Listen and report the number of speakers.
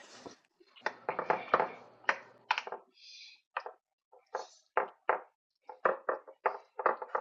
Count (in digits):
0